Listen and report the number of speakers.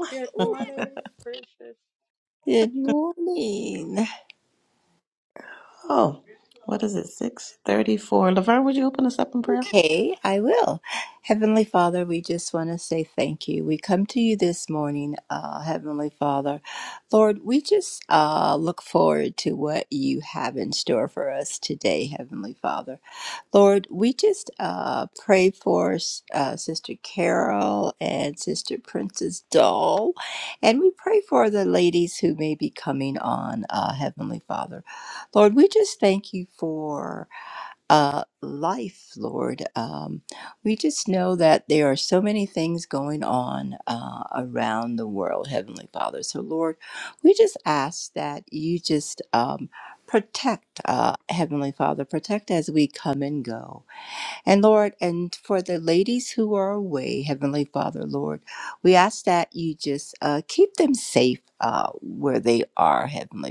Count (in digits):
3